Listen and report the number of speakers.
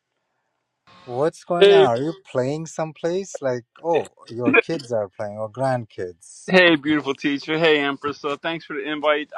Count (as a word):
two